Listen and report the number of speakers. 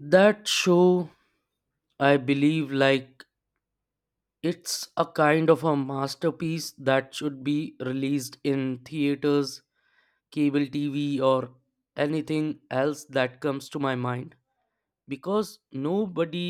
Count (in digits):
1